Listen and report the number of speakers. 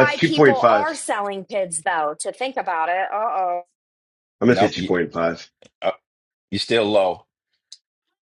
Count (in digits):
3